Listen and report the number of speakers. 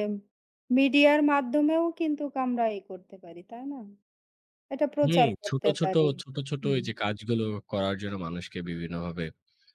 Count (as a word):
two